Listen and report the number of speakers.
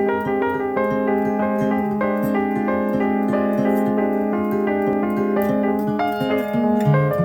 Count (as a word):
zero